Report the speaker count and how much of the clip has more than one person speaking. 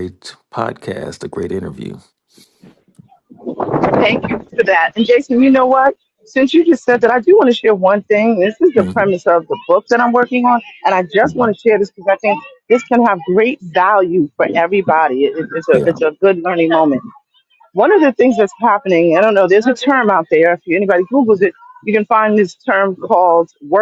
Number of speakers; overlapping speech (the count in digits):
2, about 4%